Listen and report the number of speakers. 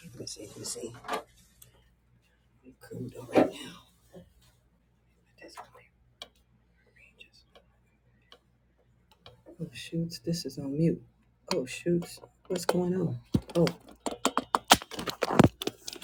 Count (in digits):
1